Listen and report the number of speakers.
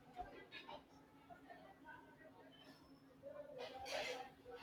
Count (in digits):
0